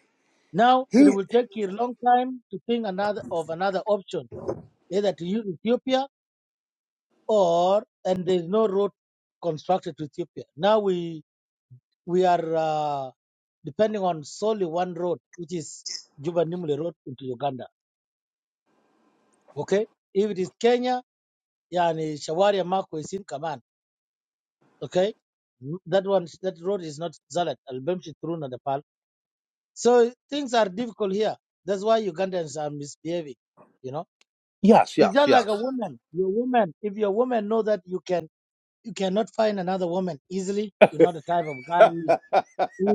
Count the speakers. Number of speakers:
2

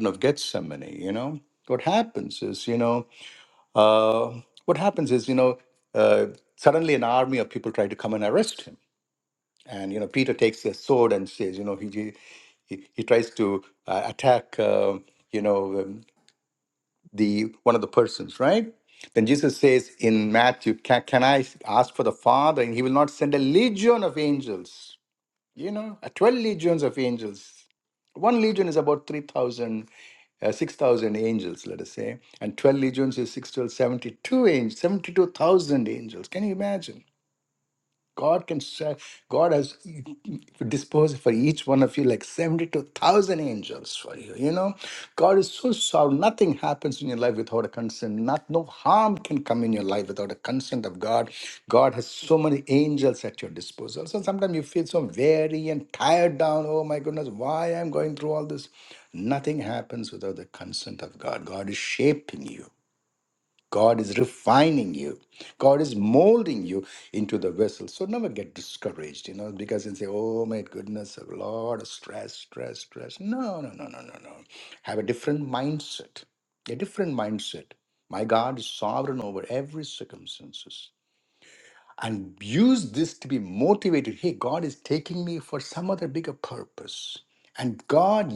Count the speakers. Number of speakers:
1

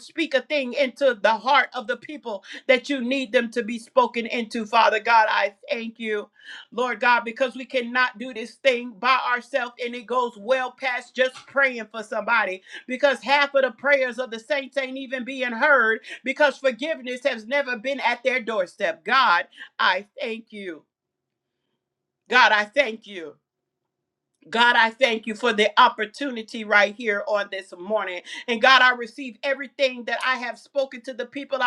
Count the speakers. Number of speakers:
1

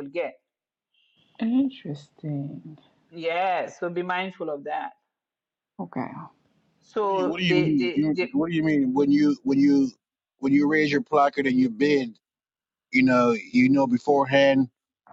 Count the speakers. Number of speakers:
3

